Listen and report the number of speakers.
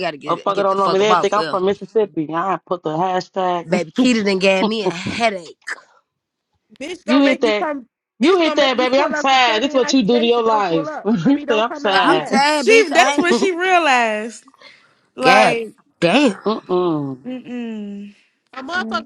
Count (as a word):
four